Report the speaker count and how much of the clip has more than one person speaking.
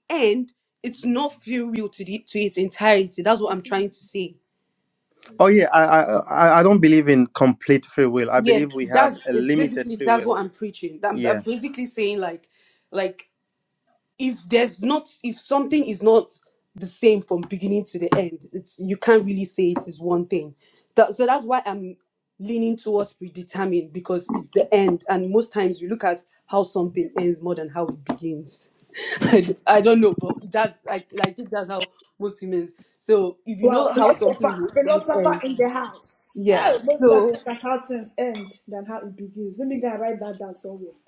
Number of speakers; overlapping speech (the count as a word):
three, about 11%